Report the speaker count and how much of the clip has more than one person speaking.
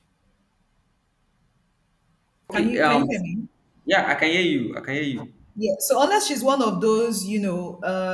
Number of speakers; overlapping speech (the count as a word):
two, about 7%